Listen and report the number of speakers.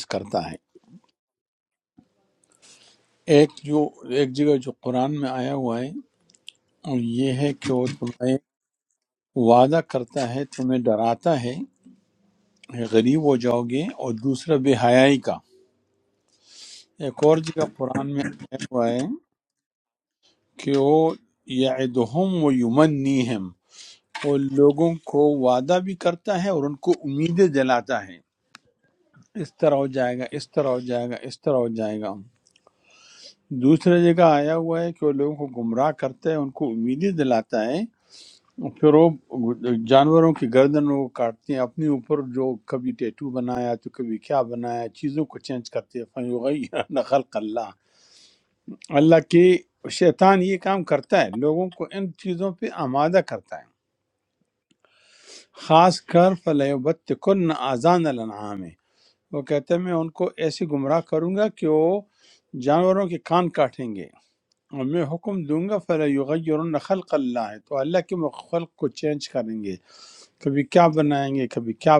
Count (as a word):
one